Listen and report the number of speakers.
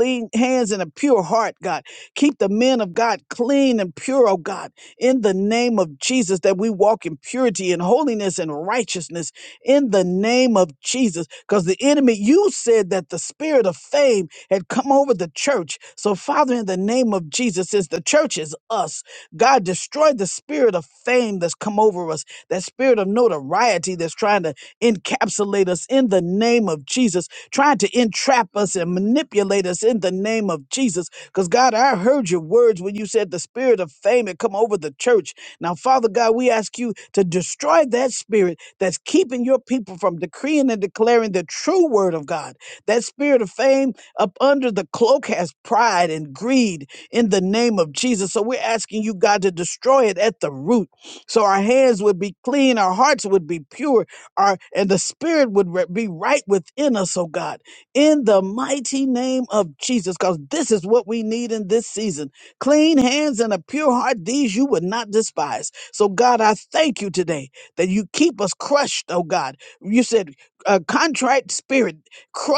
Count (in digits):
1